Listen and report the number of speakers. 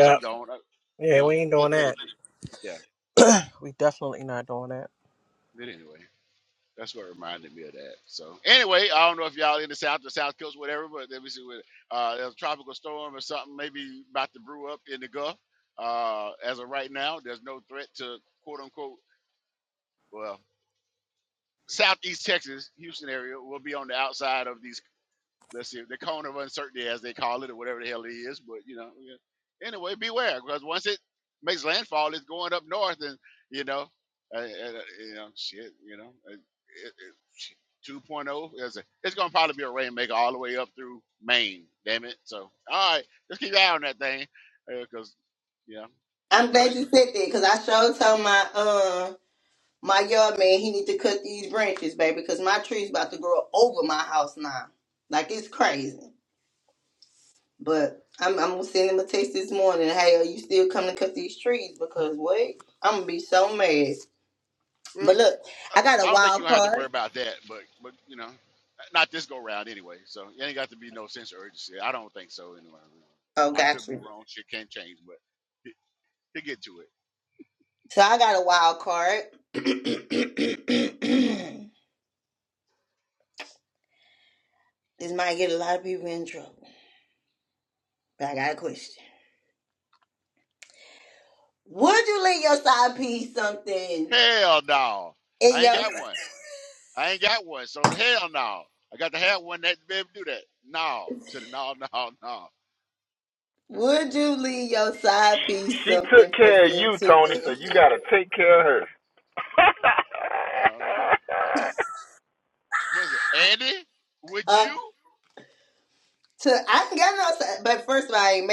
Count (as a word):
four